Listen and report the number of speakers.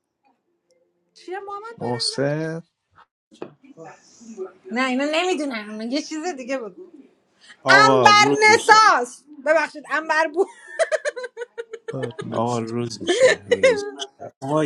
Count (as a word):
three